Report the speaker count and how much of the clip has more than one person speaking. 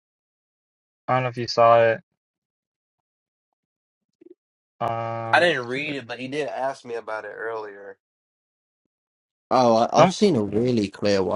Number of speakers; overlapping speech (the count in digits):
3, about 3%